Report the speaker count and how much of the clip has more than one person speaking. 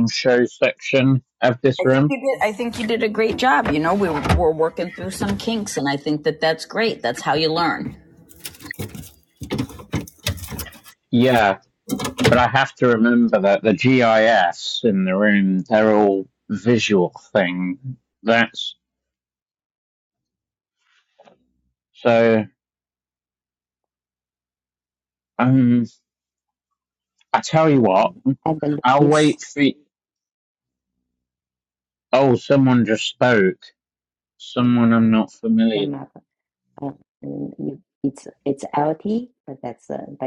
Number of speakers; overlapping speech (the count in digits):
3, about 3%